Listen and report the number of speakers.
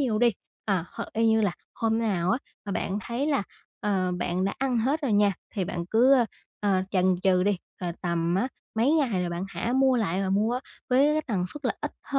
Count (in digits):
1